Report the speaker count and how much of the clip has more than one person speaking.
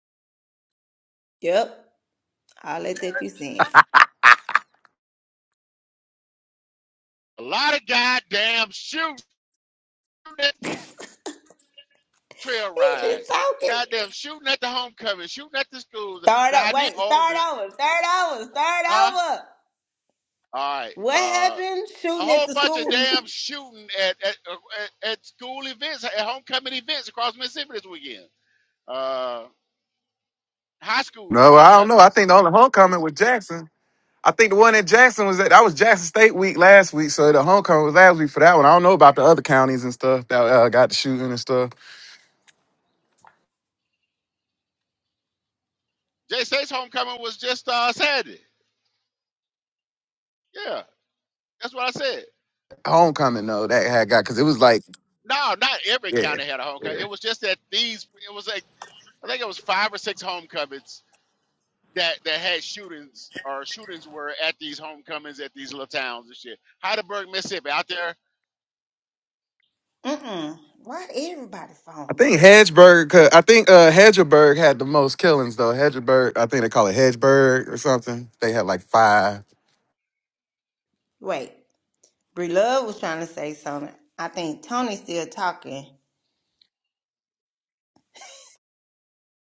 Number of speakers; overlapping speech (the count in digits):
3, about 6%